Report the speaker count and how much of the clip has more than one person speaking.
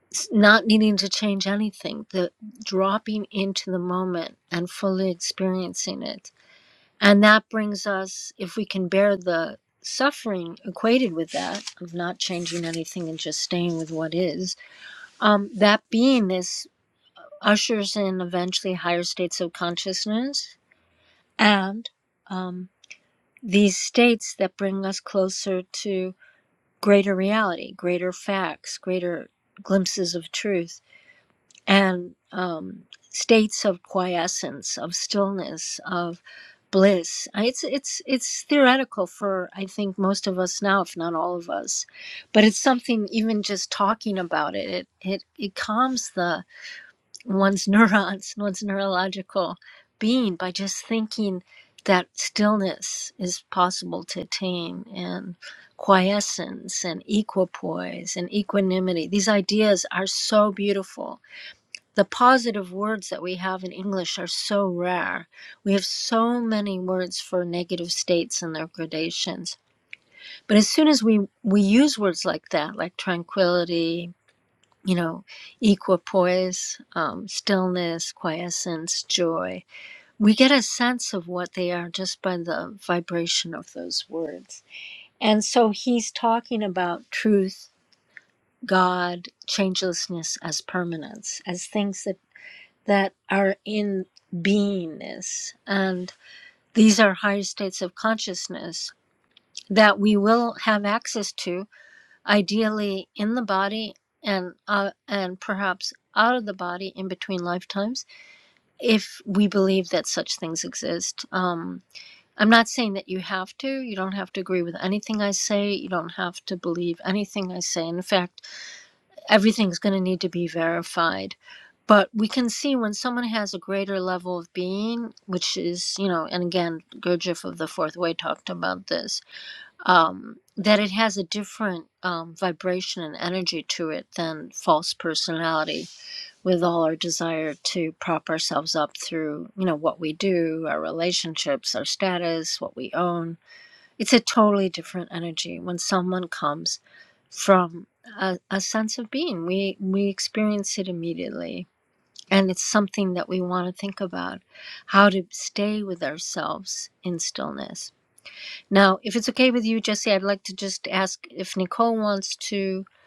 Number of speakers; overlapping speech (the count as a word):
one, no overlap